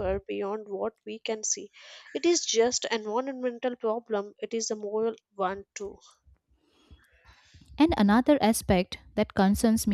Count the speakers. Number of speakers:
2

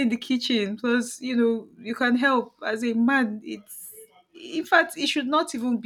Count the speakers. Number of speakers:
1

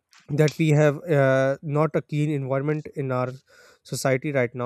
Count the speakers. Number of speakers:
1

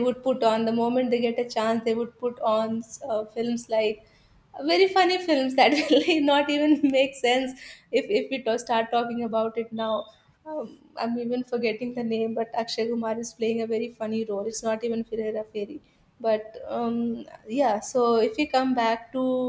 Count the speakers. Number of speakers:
1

